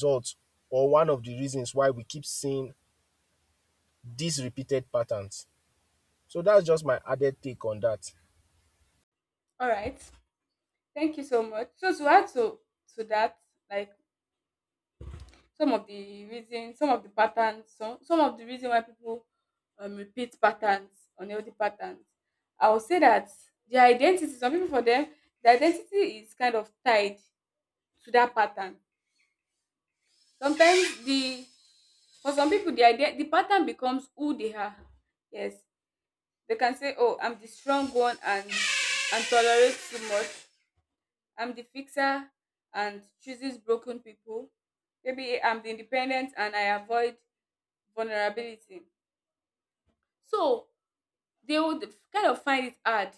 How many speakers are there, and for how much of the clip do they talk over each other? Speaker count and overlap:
2, no overlap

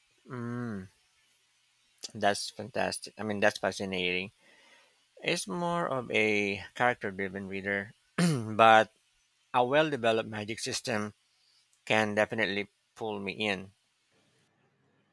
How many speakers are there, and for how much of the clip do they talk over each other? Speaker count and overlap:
1, no overlap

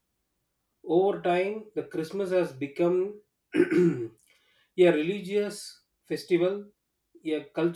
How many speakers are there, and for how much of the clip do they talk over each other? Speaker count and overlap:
1, no overlap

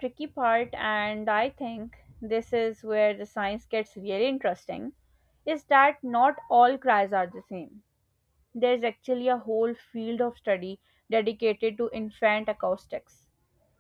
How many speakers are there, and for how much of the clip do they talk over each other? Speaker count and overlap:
1, no overlap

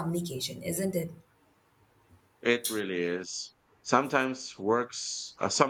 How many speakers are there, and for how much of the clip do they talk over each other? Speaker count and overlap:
2, no overlap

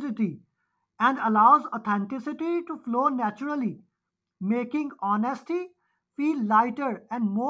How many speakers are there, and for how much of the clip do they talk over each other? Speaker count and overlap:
1, no overlap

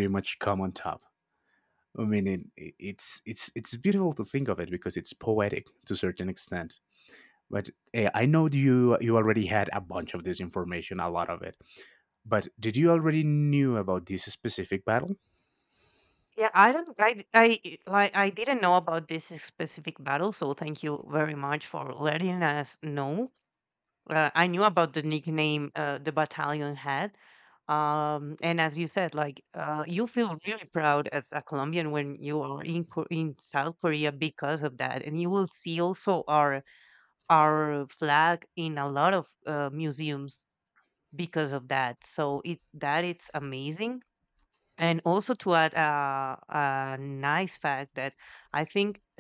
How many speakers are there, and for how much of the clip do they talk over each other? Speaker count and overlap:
2, no overlap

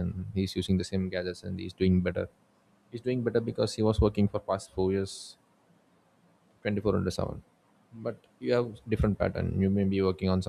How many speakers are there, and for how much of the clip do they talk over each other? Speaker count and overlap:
1, no overlap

